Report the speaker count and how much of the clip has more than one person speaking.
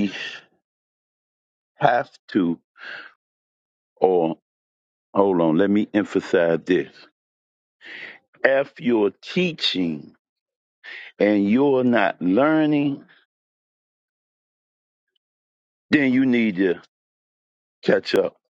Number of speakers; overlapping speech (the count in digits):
1, no overlap